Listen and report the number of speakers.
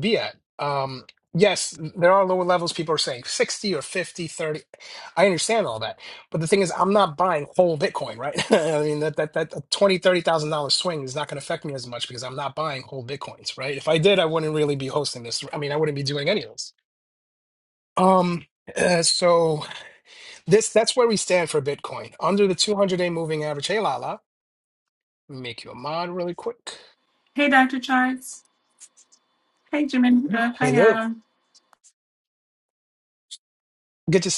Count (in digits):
2